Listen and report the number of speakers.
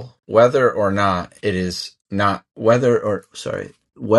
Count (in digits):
1